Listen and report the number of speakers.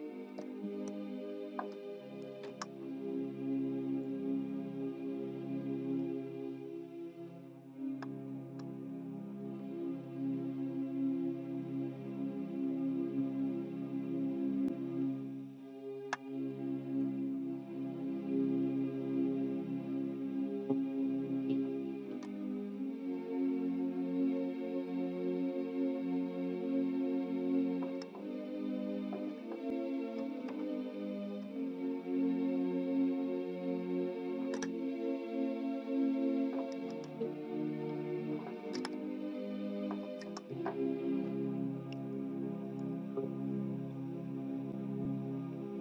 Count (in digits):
0